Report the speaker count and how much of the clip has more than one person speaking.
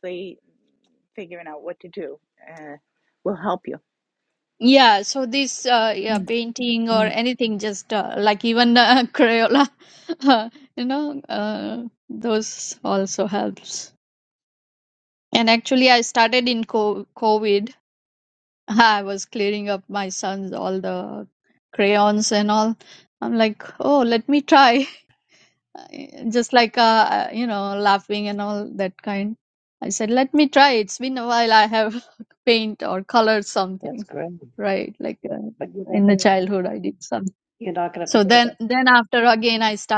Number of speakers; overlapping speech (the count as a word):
three, about 4%